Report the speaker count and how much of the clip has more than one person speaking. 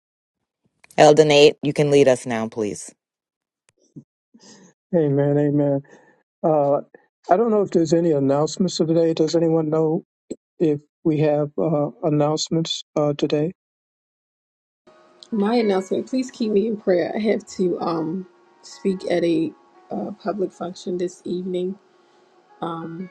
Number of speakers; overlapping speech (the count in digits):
3, no overlap